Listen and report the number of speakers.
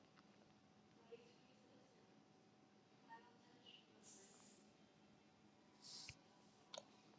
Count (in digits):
0